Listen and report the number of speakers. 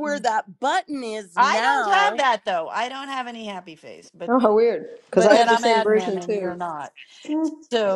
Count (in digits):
3